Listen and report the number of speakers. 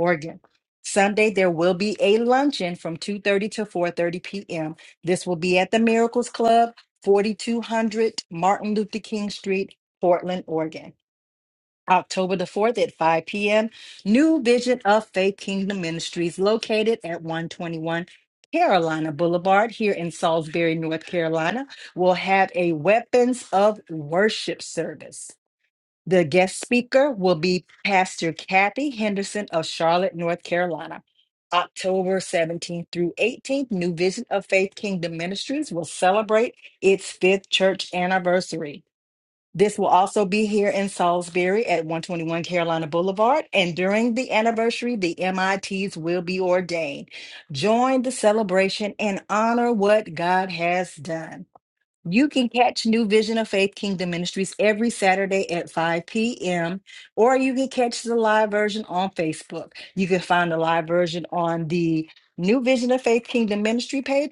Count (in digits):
1